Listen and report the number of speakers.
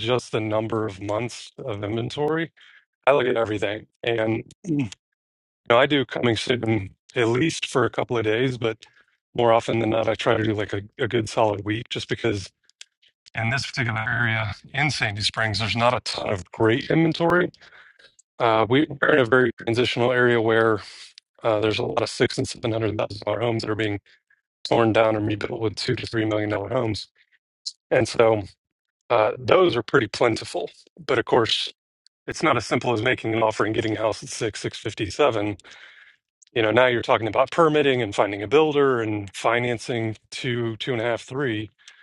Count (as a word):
one